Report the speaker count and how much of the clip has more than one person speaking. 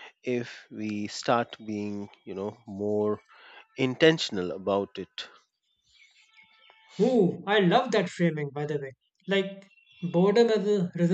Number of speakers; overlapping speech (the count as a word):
two, no overlap